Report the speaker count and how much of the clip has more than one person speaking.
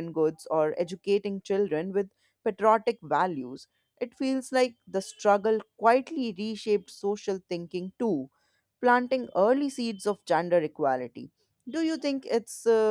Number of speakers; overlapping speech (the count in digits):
1, no overlap